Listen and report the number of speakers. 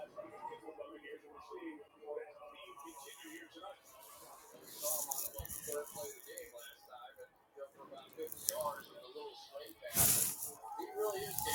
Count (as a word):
zero